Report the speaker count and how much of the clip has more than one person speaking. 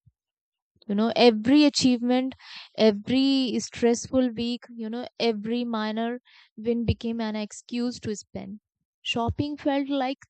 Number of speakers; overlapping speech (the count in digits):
1, no overlap